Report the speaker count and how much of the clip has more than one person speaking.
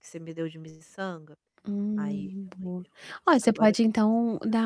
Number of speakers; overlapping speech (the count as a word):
two, about 12%